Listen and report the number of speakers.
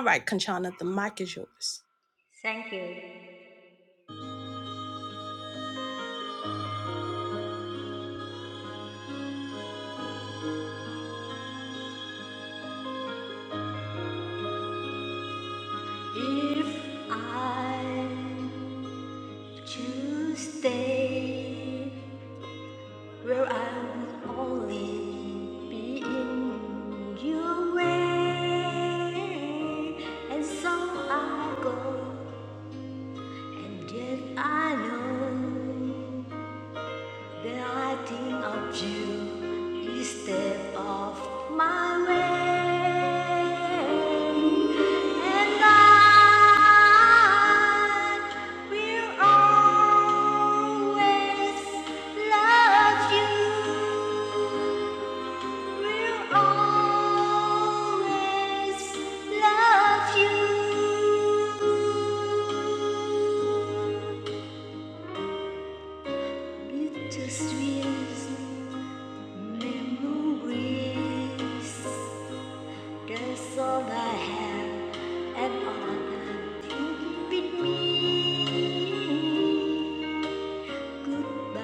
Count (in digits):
2